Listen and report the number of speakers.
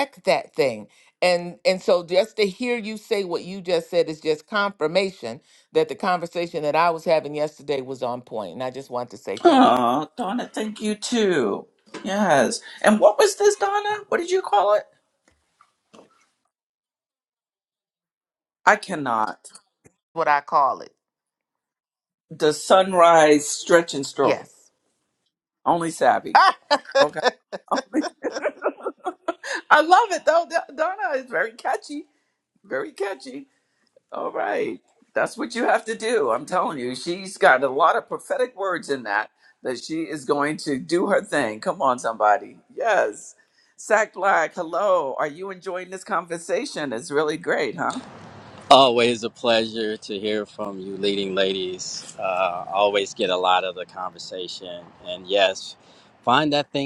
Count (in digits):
3